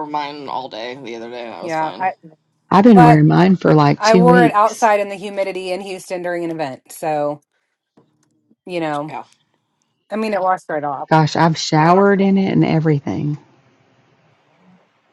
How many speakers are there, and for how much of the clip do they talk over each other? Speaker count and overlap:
three, about 11%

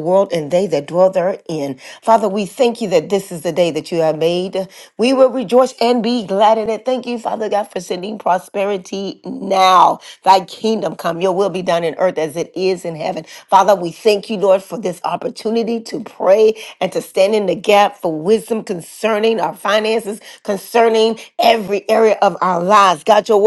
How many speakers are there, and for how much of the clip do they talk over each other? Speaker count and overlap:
one, no overlap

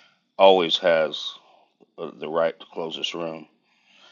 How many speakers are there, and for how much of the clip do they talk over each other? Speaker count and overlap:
one, no overlap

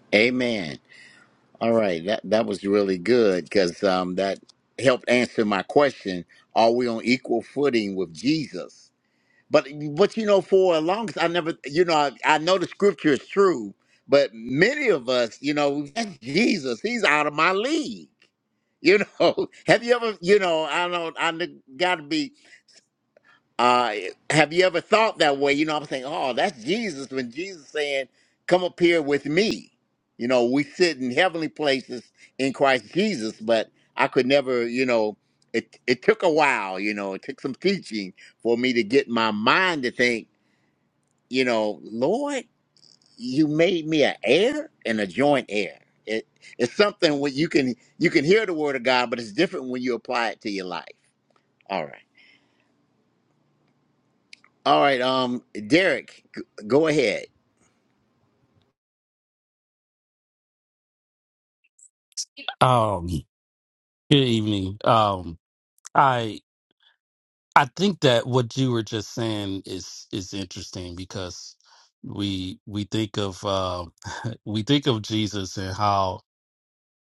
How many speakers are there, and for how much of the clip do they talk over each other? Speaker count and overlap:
two, no overlap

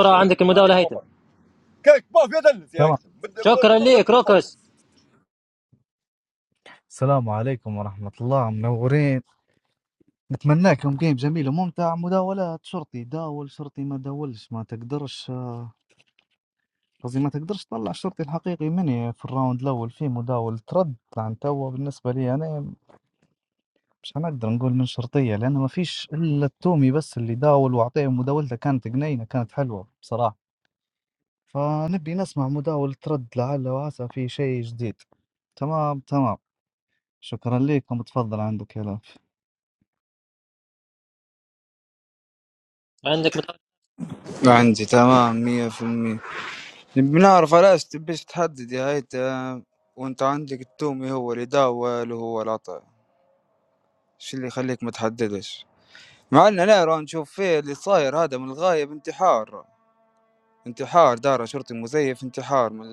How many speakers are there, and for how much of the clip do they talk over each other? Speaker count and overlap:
four, about 3%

